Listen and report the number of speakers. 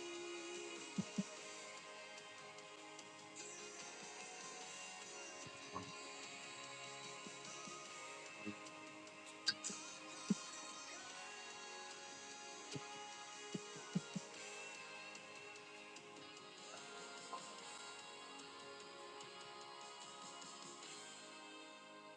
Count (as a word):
zero